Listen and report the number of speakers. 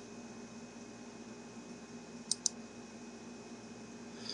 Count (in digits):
0